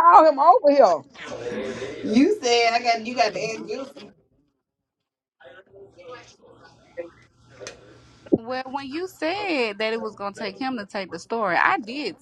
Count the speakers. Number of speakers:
3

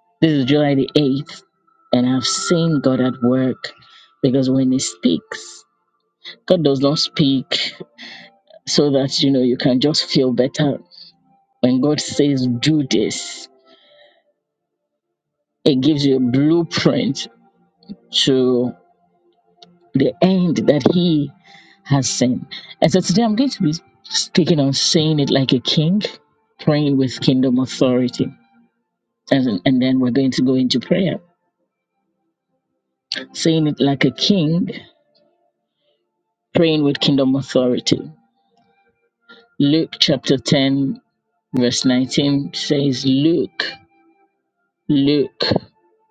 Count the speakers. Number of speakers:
1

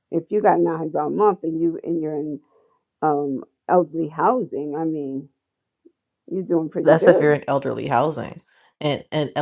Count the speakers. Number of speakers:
2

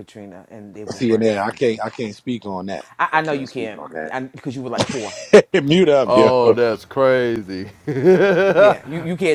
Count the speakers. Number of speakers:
3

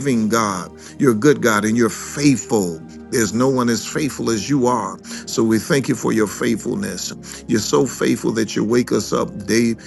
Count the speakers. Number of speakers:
1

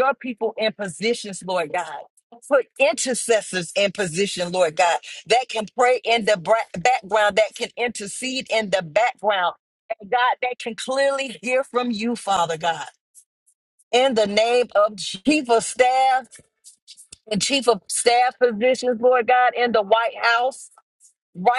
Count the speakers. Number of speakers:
1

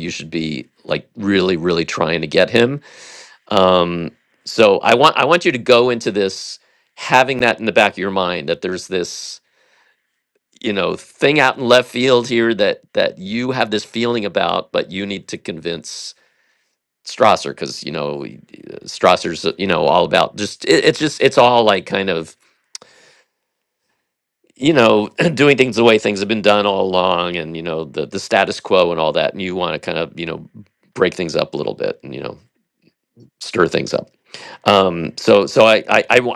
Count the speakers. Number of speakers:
1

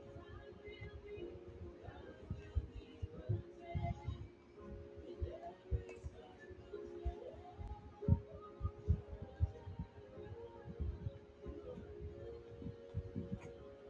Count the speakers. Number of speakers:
0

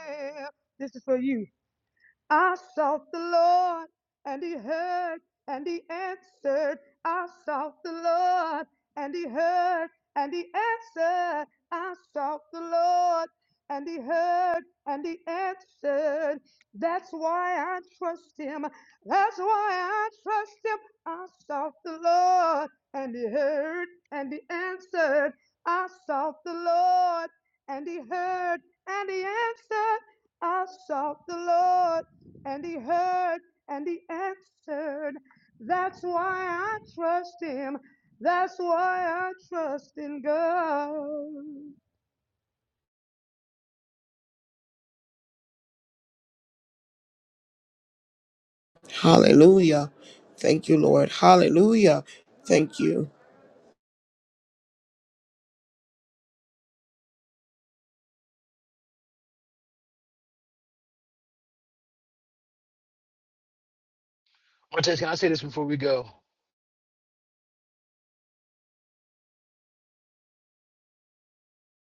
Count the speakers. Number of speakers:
3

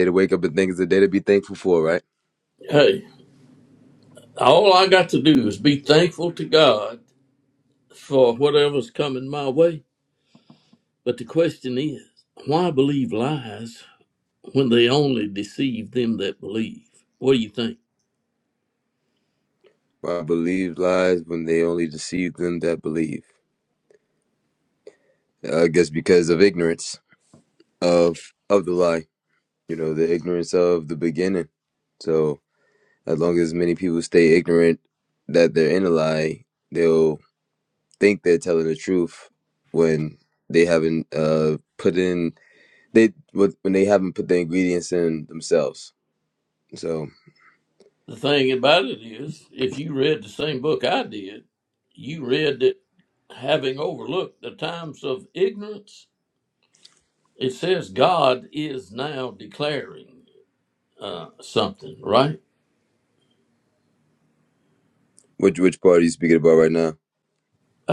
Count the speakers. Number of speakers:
2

